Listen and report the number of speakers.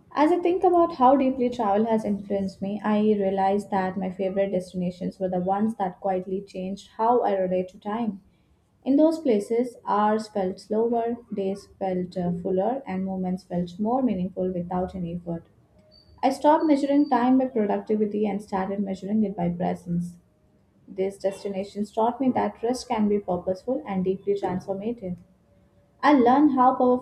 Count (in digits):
1